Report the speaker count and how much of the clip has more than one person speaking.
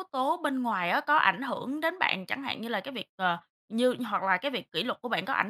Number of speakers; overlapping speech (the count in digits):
1, no overlap